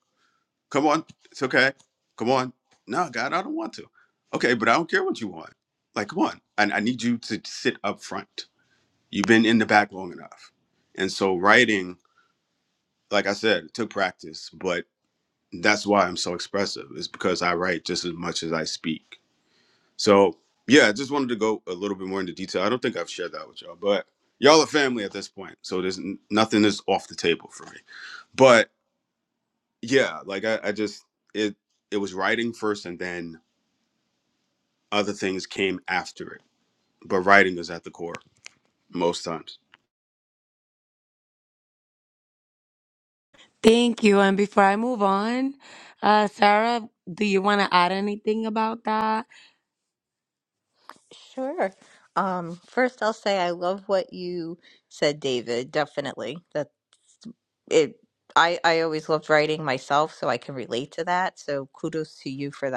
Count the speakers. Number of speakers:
3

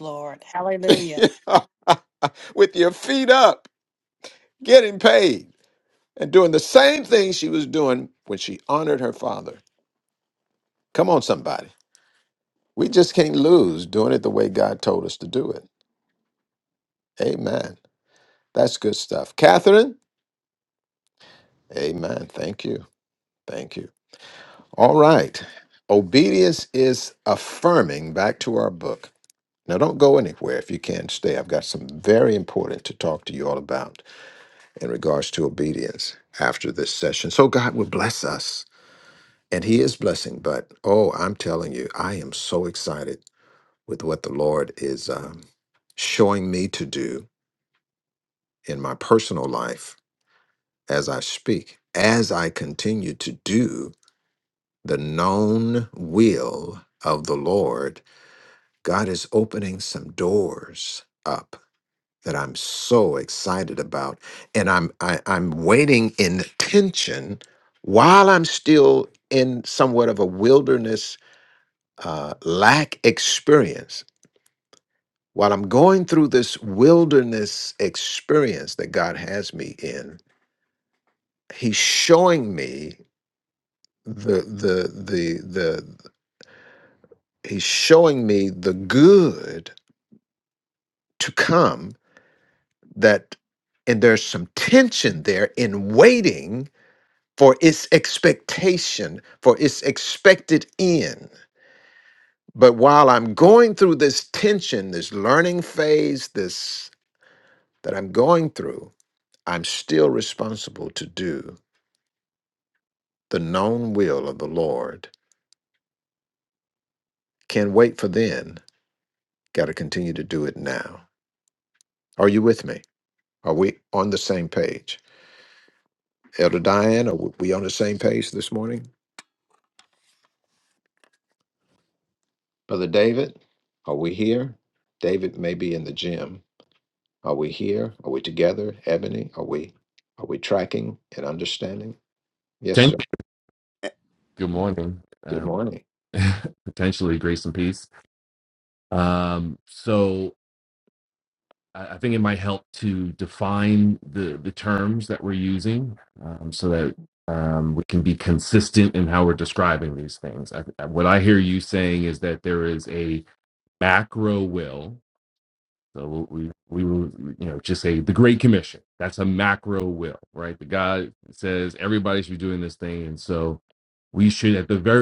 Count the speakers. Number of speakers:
3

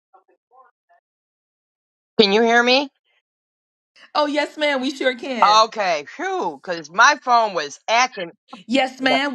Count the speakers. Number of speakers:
2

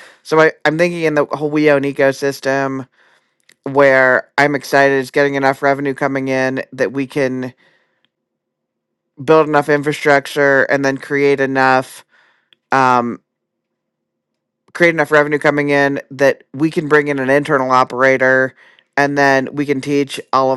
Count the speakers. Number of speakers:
1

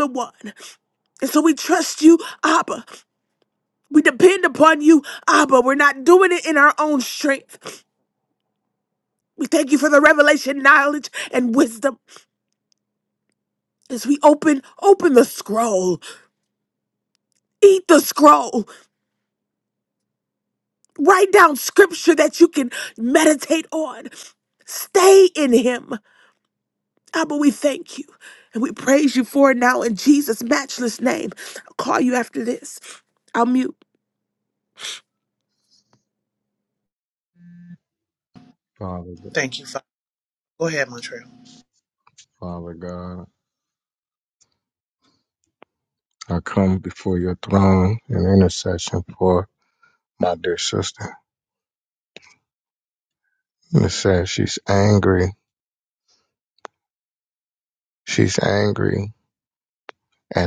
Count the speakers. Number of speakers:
3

